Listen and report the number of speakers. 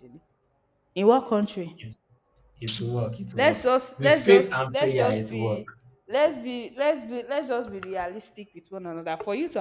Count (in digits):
2